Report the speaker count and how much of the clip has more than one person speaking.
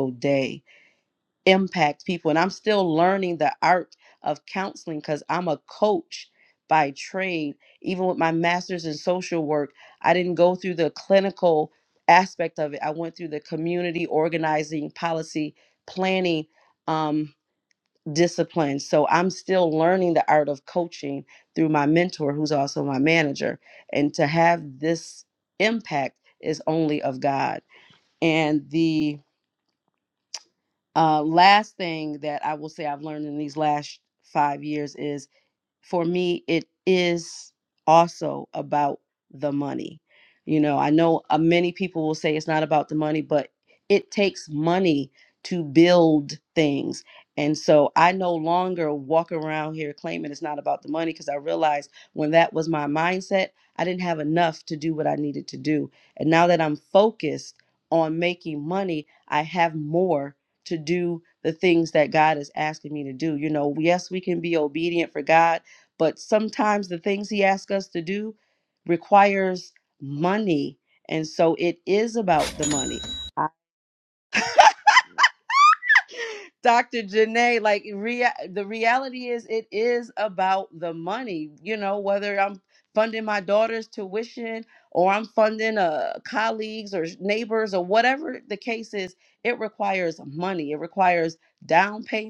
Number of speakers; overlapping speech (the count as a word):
one, no overlap